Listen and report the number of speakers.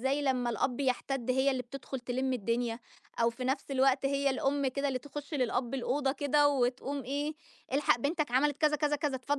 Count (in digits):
1